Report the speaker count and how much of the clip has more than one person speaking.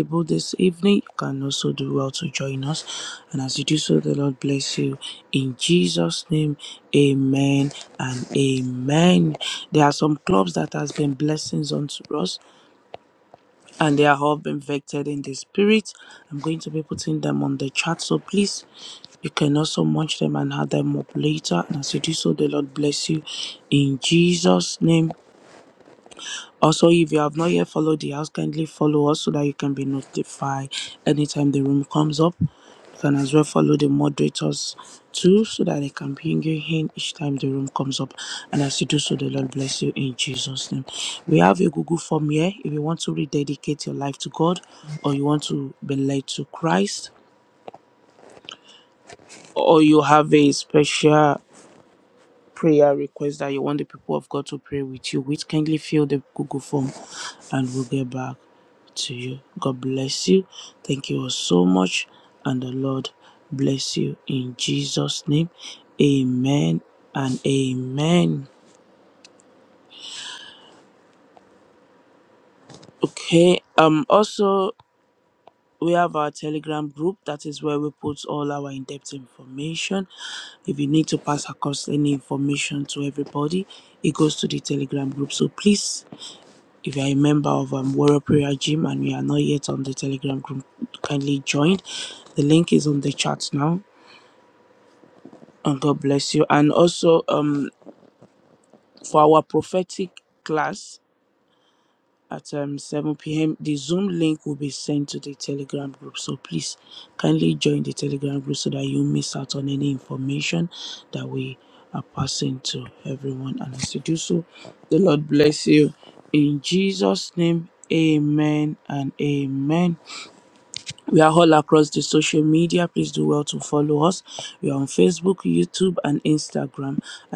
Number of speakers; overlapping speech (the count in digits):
1, no overlap